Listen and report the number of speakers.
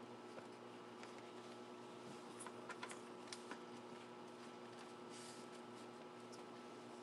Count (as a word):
zero